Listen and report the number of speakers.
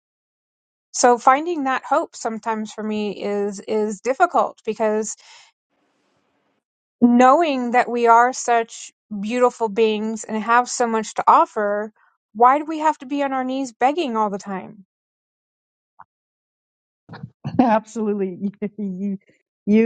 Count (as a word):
two